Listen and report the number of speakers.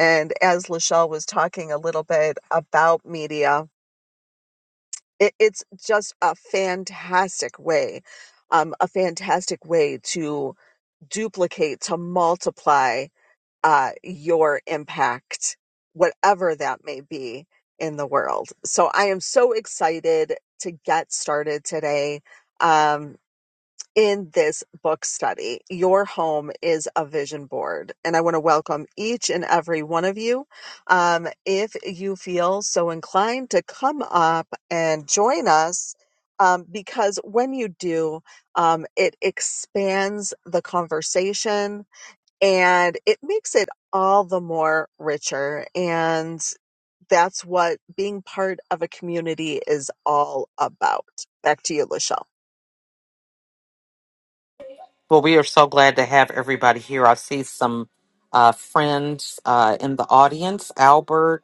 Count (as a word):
two